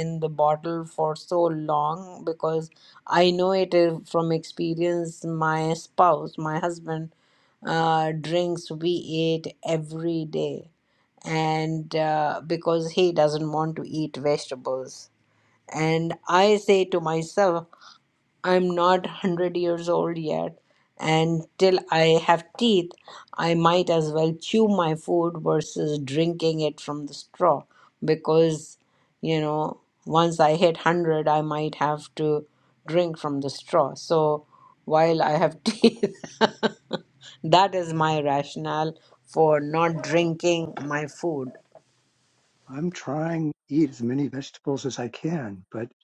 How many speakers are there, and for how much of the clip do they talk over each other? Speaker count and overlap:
two, no overlap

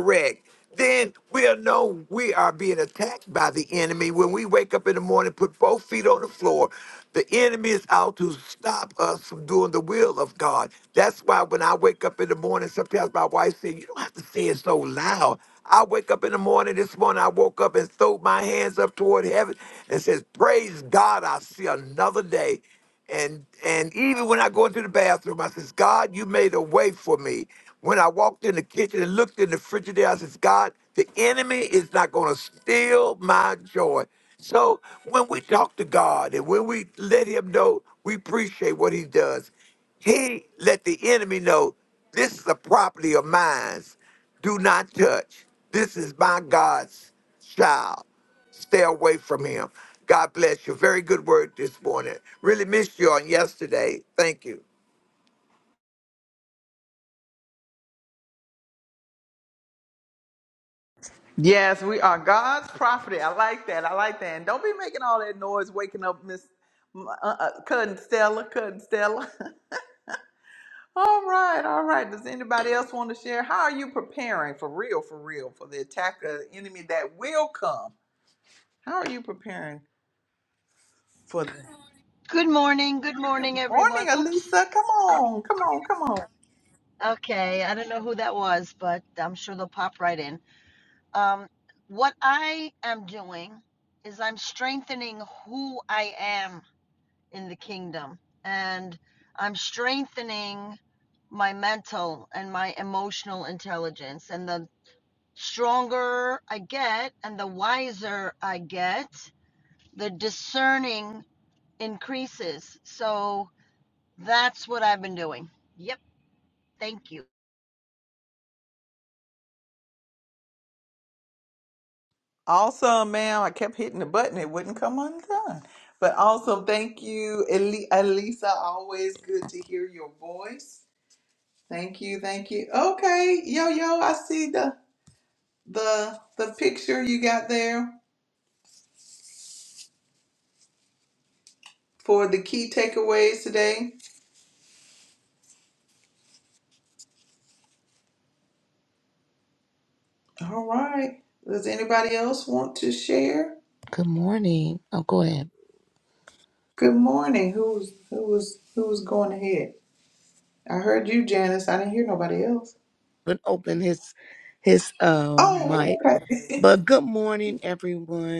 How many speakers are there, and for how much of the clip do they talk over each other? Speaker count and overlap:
four, about 1%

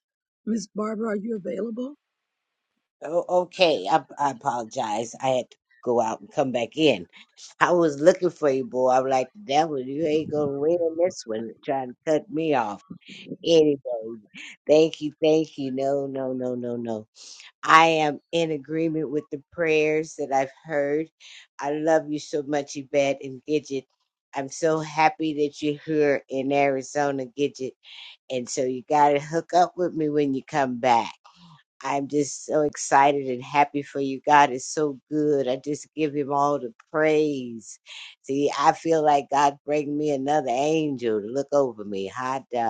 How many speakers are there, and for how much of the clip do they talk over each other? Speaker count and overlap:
two, no overlap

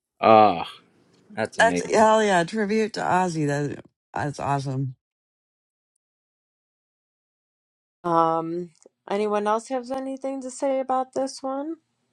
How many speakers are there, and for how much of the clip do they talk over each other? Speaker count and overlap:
three, about 3%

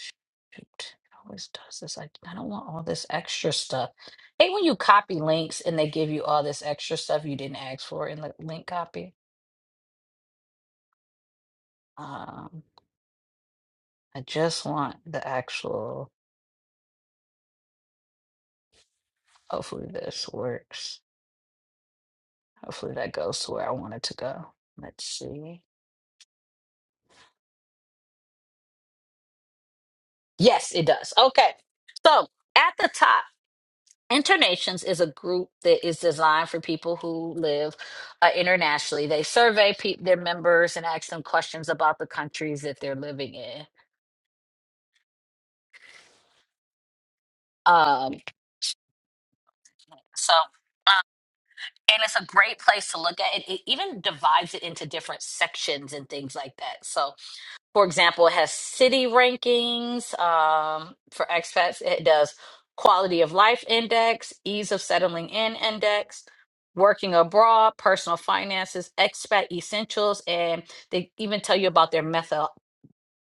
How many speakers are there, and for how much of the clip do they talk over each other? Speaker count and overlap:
one, no overlap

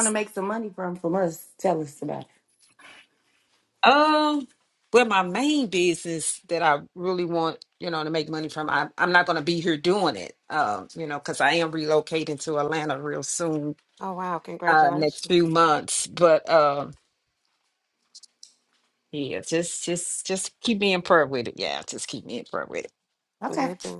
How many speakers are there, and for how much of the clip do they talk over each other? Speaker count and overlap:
three, about 3%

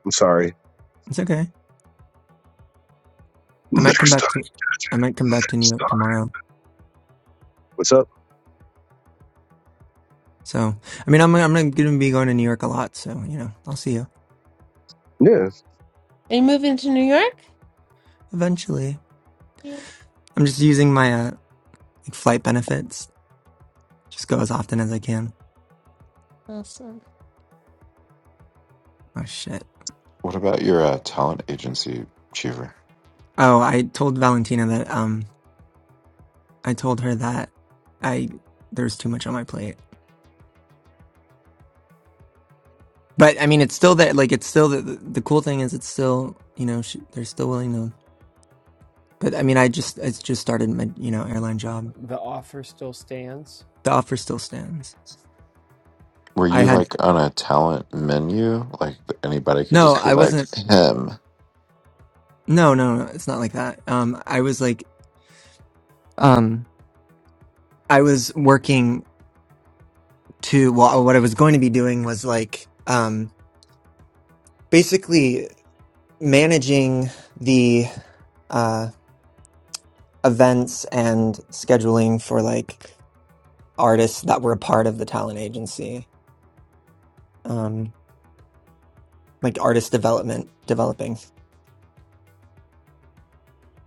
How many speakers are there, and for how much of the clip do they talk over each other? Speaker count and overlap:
five, about 2%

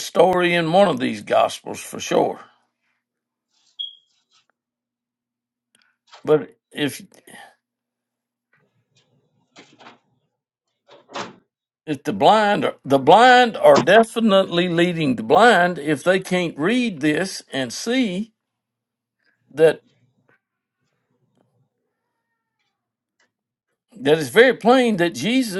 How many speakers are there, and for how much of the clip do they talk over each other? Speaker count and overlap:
one, no overlap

